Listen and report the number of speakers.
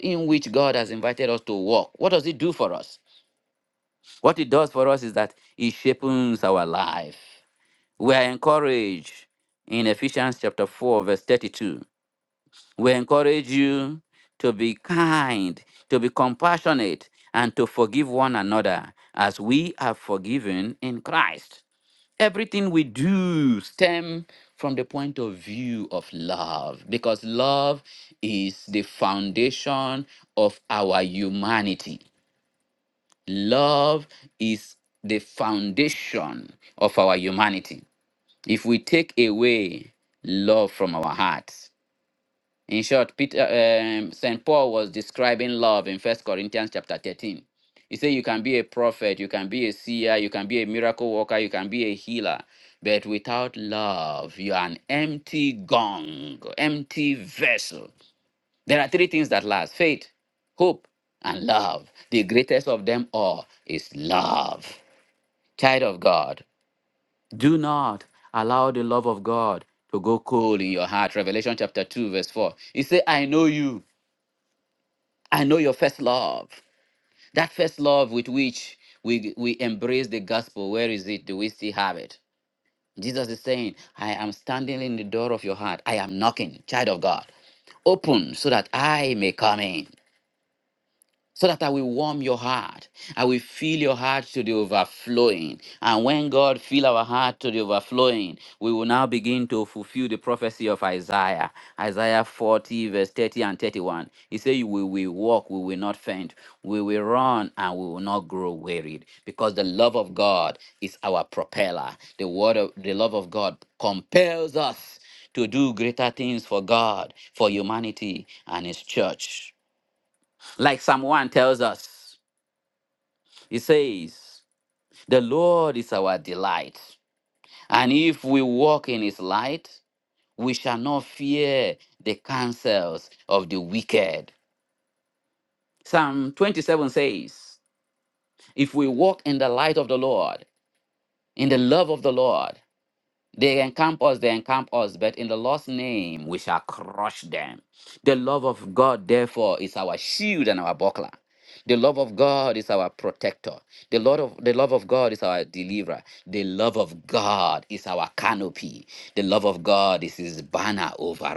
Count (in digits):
1